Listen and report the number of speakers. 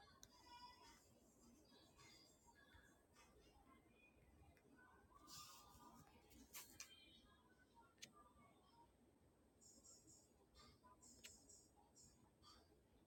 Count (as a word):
zero